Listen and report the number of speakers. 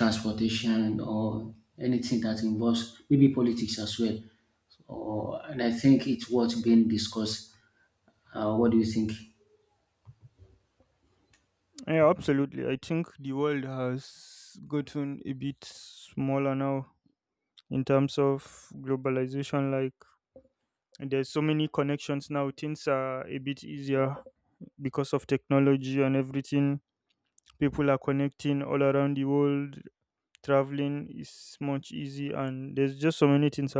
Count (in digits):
2